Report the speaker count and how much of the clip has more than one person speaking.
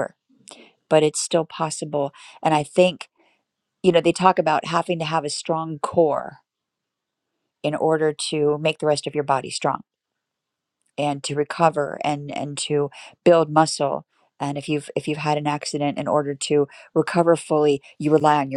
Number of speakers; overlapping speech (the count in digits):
1, no overlap